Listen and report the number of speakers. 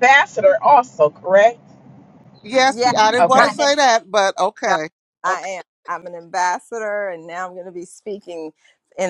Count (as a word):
three